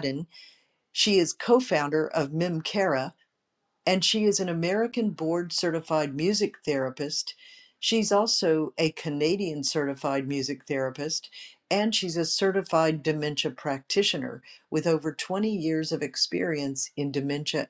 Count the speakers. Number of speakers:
one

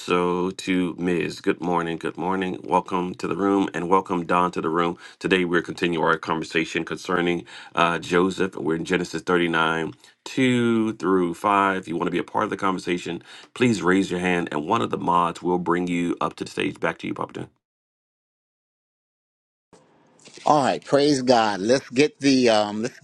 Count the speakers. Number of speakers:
two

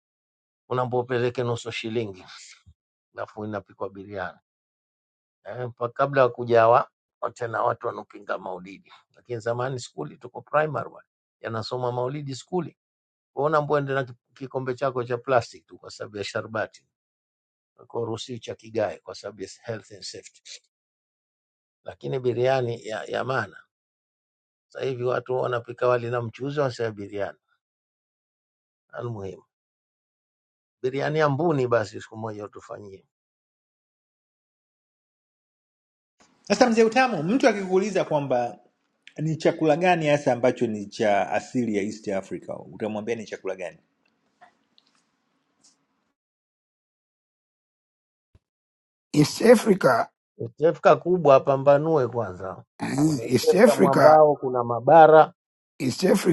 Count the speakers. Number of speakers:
three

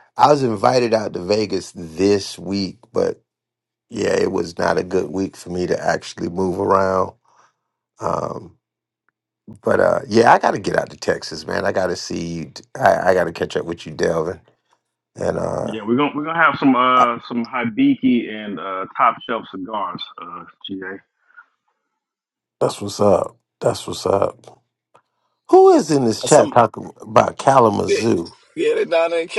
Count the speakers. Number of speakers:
three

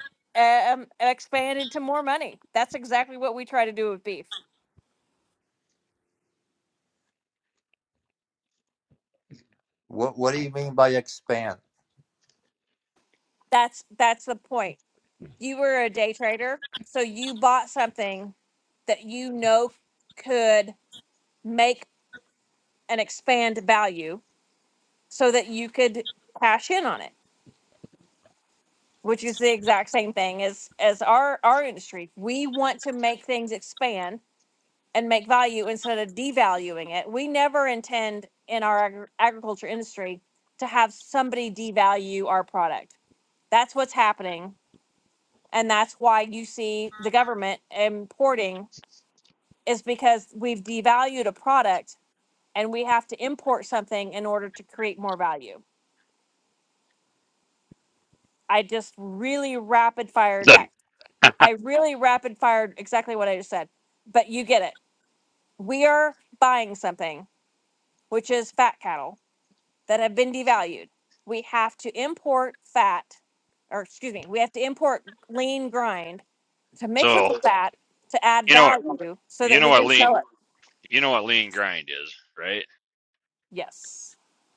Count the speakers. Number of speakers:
three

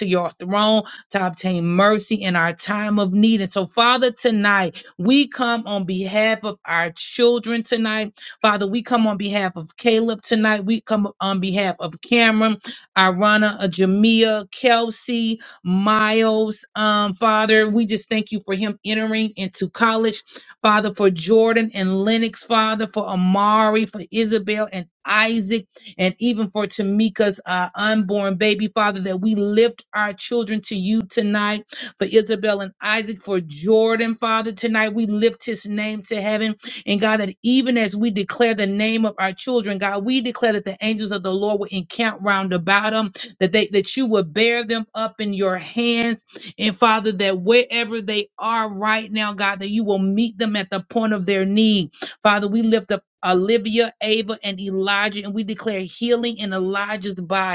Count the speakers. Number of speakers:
one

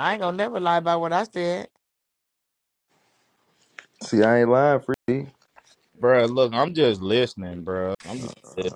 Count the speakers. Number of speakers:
three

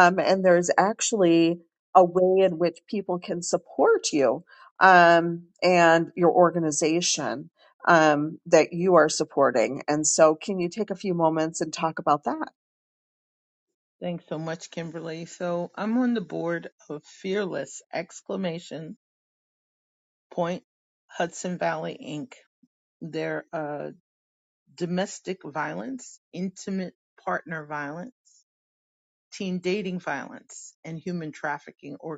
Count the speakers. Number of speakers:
two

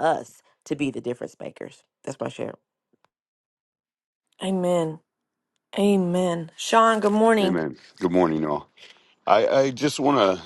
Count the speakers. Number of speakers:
three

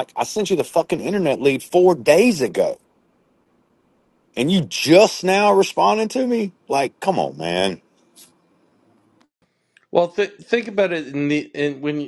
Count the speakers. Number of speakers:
two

